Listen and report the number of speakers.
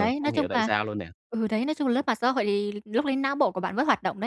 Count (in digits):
2